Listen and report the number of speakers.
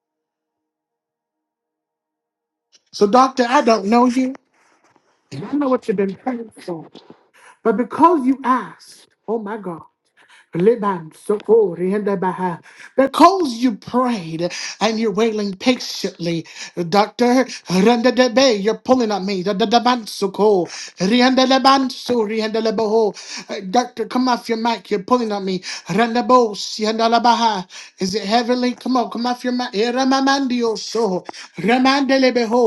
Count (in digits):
1